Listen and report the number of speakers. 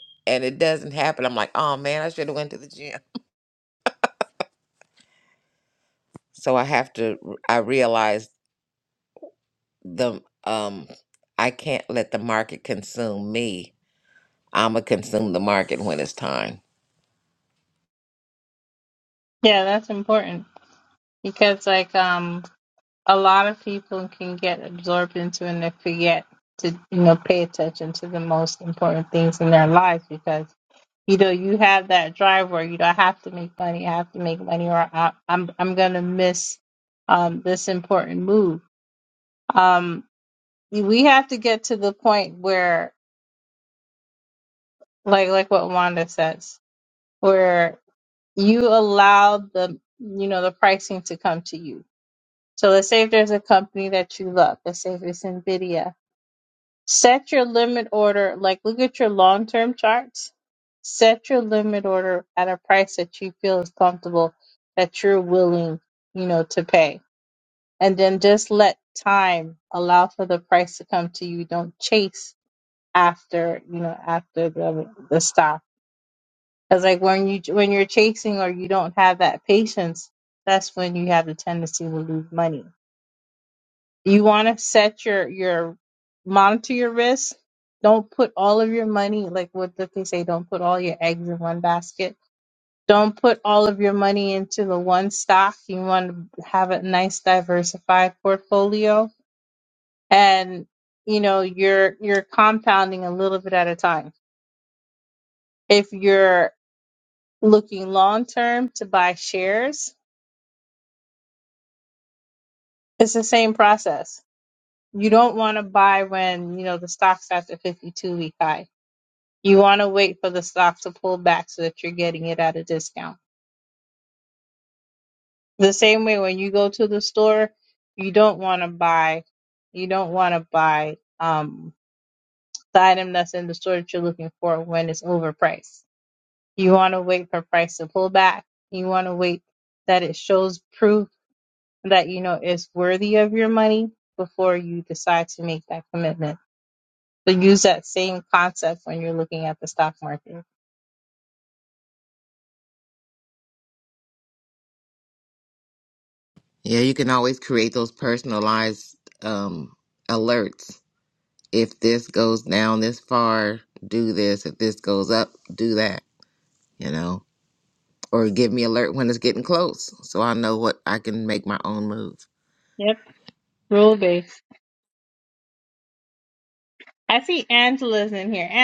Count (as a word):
two